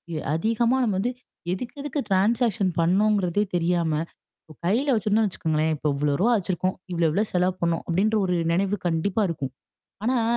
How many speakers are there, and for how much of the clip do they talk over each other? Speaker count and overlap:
1, no overlap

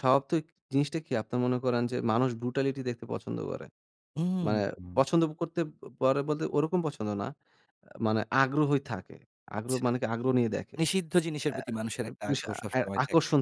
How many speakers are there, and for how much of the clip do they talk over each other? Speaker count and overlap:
2, about 16%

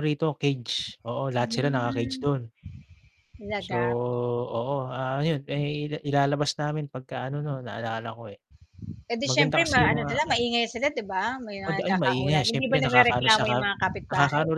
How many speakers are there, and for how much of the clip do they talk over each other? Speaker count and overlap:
2, about 31%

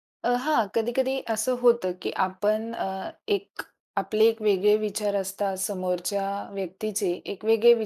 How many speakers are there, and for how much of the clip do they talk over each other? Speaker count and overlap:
1, no overlap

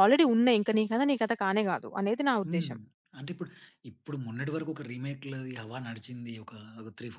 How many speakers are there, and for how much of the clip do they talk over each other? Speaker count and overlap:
2, about 5%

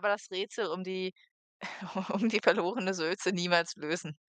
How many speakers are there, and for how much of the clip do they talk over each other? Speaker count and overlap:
1, no overlap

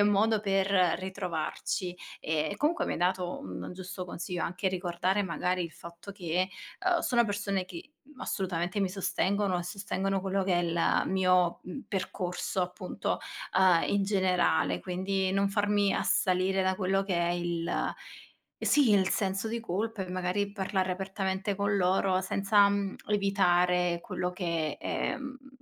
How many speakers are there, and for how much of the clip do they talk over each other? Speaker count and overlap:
1, no overlap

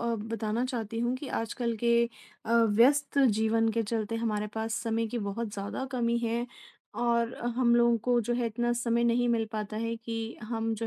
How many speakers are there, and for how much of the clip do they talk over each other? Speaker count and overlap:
1, no overlap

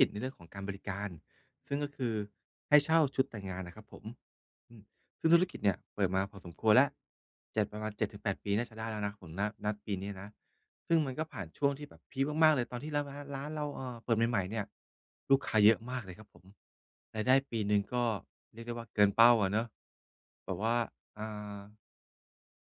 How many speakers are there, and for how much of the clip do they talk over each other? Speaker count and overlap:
1, no overlap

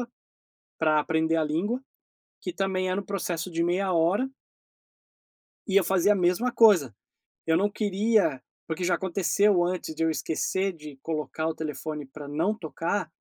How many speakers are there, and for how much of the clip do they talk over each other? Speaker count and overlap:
1, no overlap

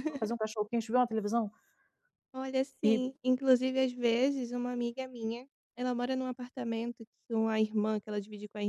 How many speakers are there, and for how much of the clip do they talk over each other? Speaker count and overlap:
2, about 2%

